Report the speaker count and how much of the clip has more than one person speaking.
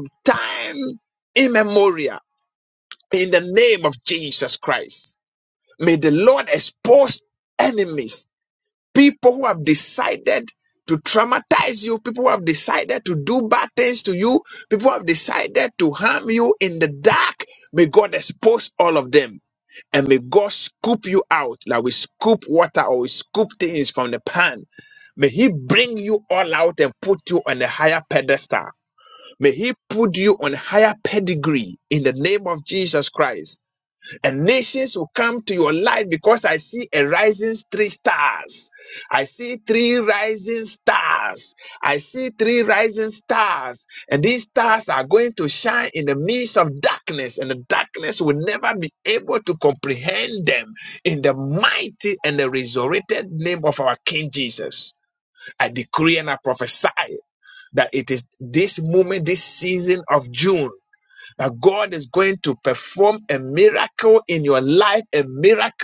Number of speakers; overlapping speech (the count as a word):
one, no overlap